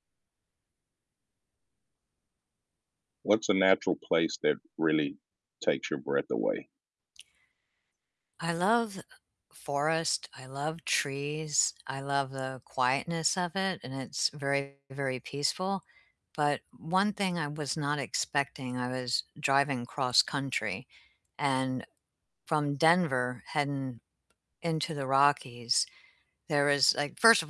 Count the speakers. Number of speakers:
two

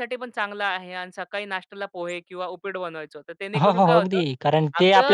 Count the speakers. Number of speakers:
two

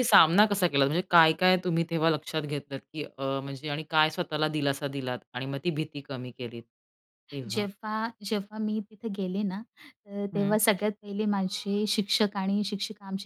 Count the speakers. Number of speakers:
two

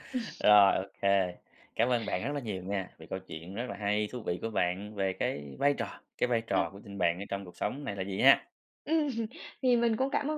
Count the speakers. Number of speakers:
two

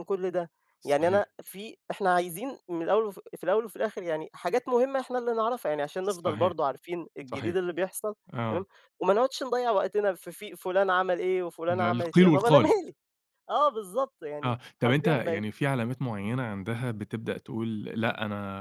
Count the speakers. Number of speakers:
two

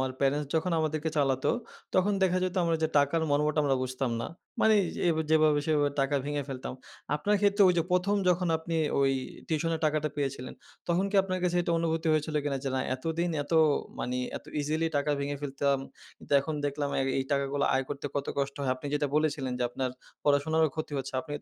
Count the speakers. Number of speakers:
one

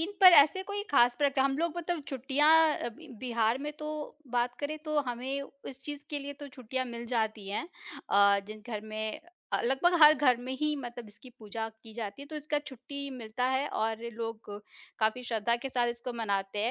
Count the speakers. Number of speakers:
one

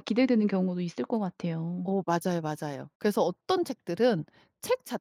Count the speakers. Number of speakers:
two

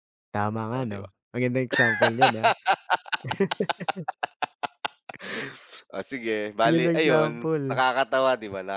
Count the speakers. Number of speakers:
two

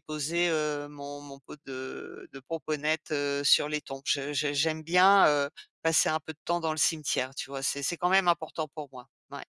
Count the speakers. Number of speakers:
one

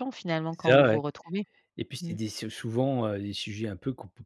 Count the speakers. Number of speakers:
two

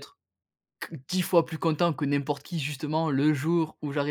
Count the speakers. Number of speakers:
one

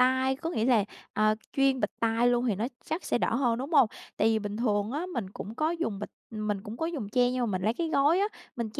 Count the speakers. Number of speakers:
one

